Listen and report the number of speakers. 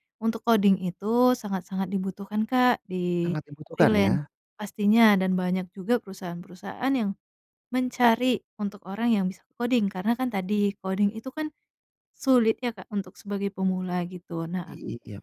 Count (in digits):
2